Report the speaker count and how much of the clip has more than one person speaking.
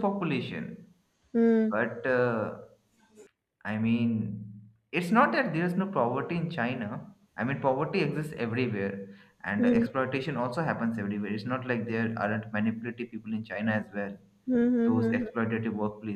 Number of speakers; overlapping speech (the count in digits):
2, about 5%